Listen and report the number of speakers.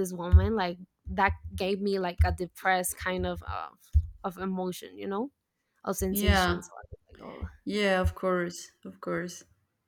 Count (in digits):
2